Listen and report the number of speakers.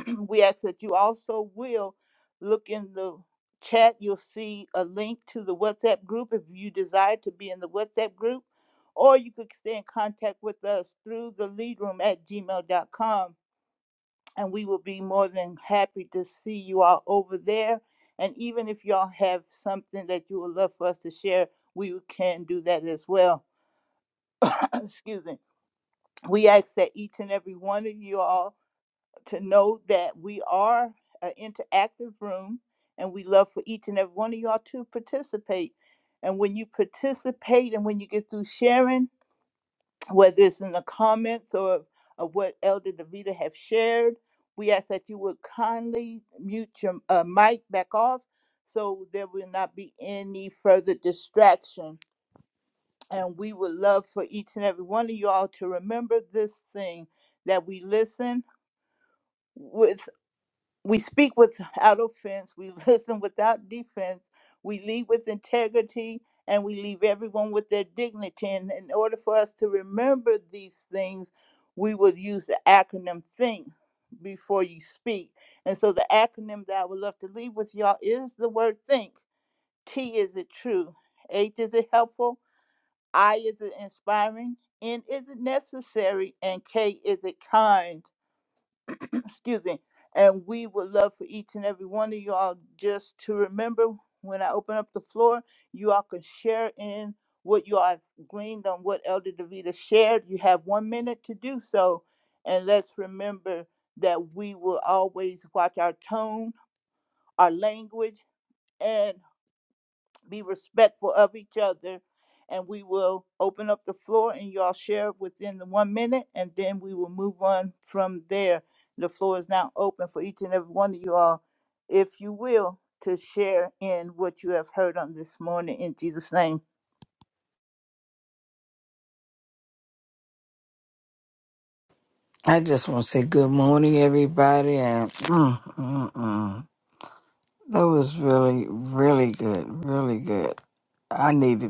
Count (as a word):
two